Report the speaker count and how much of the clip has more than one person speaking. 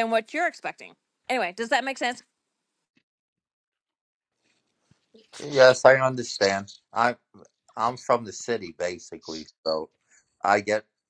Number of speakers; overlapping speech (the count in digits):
2, no overlap